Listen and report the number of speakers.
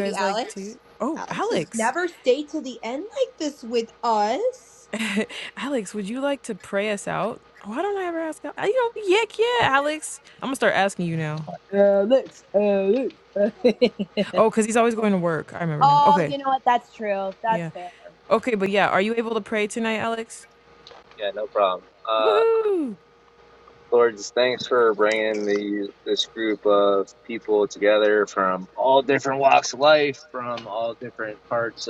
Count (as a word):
three